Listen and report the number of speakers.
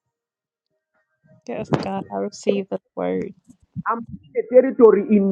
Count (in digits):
2